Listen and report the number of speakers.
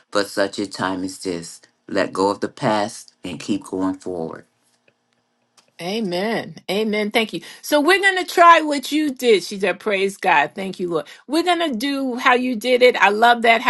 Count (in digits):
2